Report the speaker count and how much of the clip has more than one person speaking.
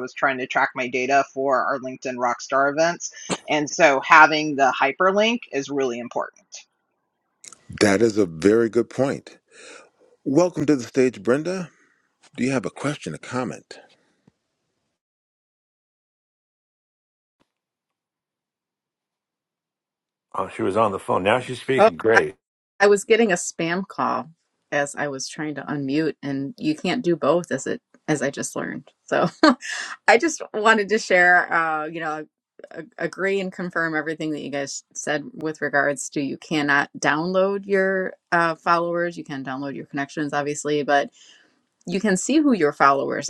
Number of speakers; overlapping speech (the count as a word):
four, about 1%